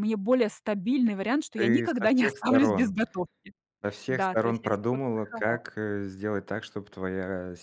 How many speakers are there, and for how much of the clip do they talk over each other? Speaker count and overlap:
2, about 37%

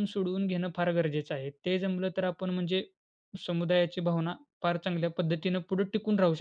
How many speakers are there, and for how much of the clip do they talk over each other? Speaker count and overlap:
1, no overlap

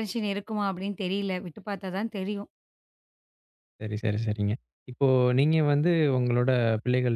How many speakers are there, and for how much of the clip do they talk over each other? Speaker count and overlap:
2, no overlap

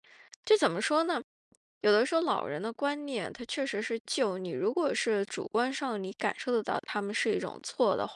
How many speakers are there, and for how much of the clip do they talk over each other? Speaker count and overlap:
1, no overlap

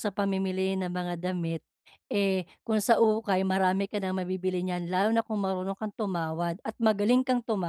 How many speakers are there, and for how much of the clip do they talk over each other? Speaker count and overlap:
1, no overlap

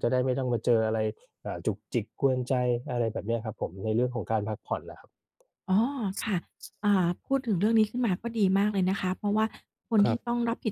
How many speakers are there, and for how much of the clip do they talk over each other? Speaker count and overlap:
2, about 2%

